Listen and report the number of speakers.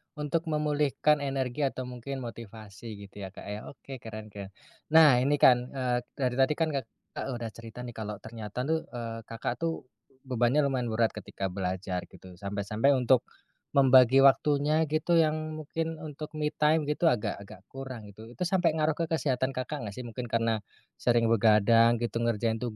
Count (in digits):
1